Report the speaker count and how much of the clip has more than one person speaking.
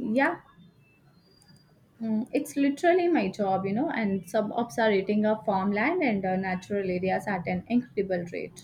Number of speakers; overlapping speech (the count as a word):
one, no overlap